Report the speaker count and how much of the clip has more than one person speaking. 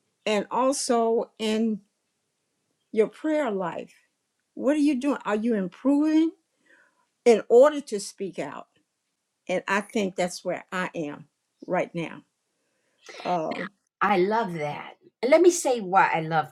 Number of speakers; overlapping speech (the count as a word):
two, no overlap